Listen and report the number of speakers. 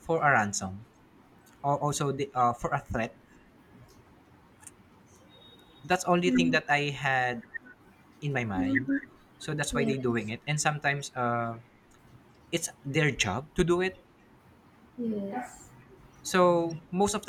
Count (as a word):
two